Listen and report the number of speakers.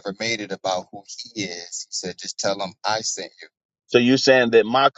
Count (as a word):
two